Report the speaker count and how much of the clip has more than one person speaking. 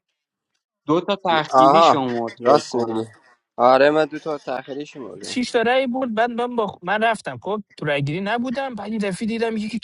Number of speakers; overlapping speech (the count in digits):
3, about 12%